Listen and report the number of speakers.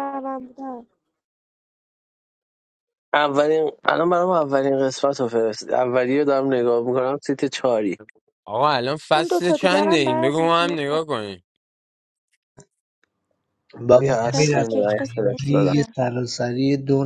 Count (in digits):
4